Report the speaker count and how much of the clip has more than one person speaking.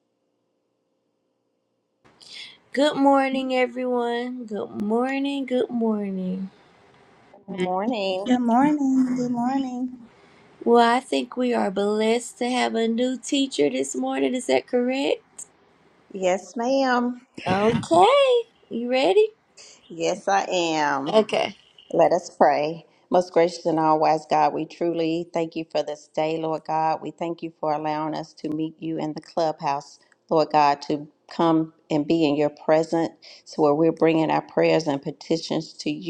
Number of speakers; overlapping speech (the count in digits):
3, under 1%